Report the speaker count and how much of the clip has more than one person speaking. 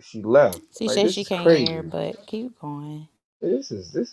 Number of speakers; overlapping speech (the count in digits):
2, about 26%